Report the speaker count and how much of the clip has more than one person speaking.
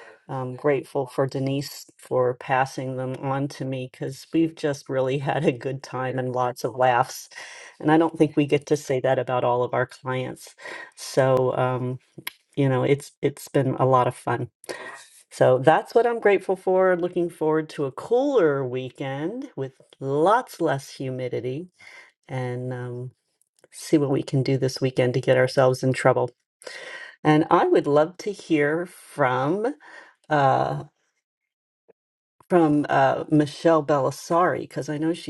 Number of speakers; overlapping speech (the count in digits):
1, no overlap